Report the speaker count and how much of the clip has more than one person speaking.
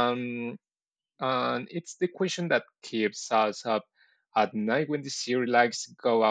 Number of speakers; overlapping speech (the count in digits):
1, no overlap